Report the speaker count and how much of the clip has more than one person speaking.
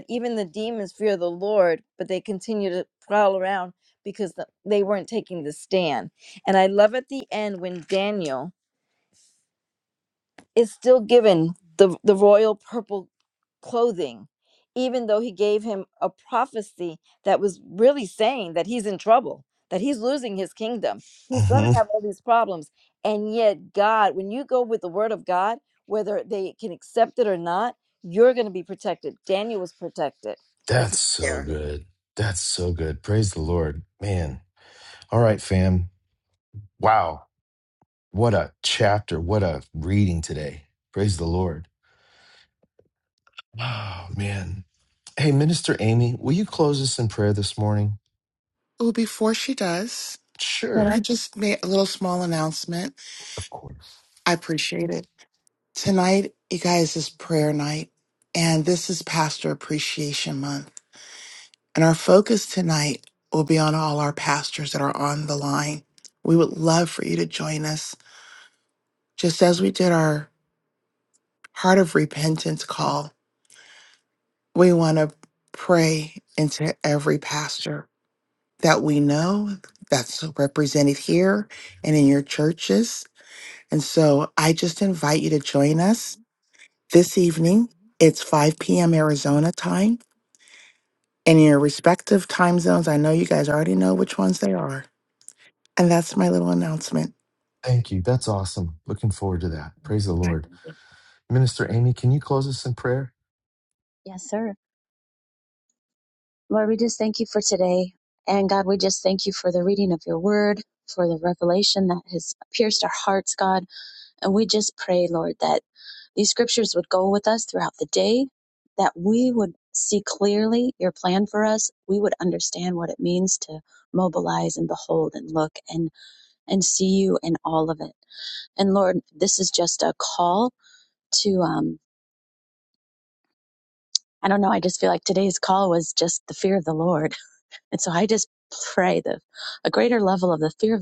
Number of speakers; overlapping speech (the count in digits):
4, about 1%